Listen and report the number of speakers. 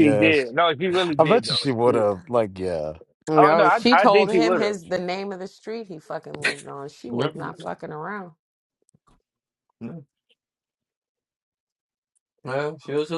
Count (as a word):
four